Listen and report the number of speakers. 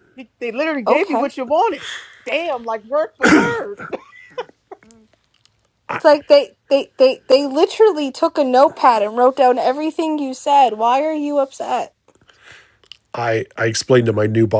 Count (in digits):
3